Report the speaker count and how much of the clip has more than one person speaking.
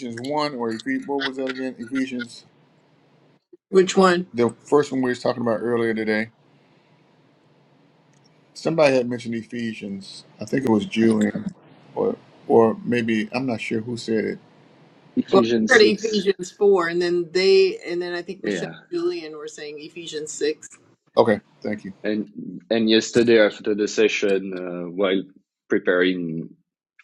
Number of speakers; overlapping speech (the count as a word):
three, about 5%